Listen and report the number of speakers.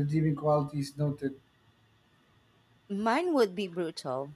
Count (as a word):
two